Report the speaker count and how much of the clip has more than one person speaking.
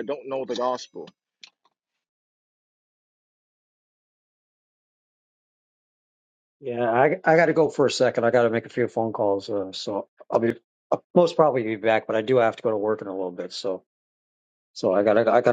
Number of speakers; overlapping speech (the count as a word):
two, no overlap